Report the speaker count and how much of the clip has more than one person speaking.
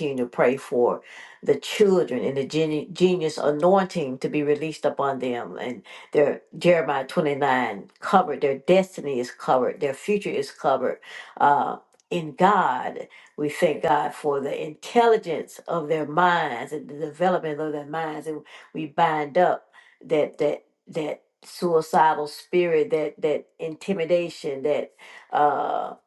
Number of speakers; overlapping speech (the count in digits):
1, no overlap